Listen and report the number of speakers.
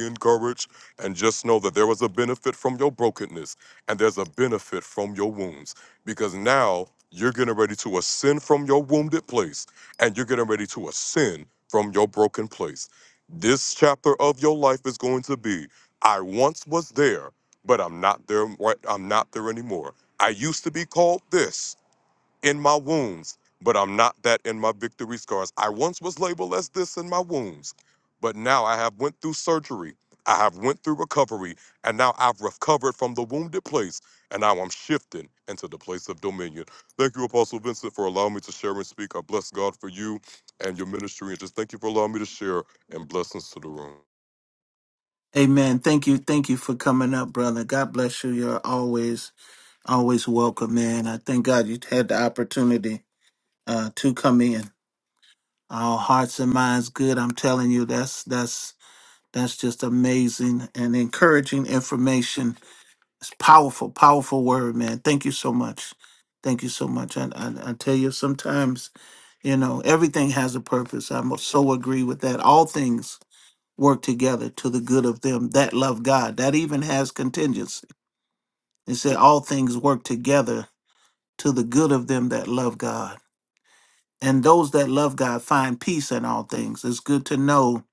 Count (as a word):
two